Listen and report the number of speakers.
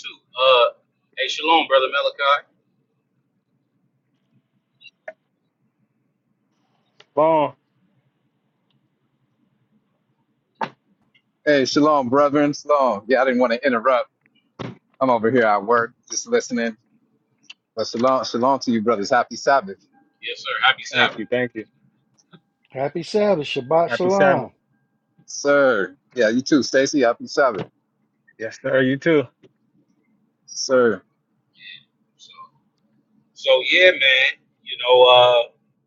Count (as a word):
four